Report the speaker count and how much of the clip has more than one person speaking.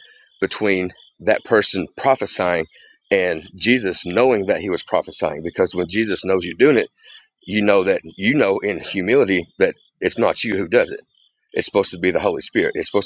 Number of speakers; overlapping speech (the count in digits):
1, no overlap